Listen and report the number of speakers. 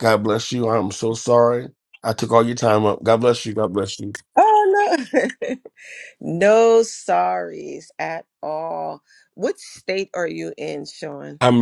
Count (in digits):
2